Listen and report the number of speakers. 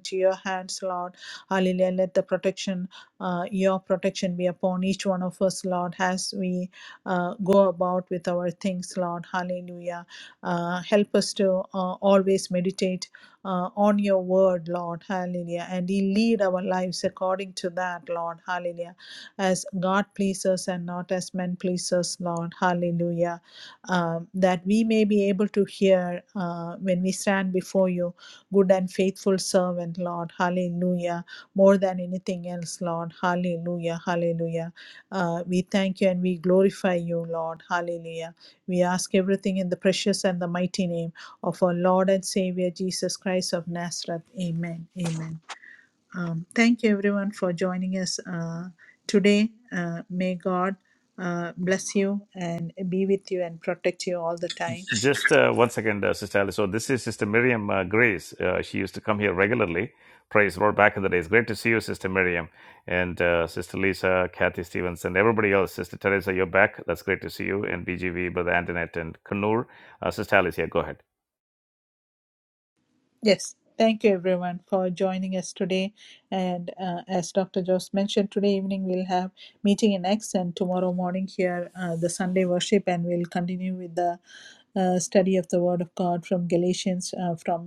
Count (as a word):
two